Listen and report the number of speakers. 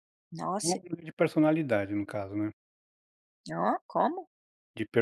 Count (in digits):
2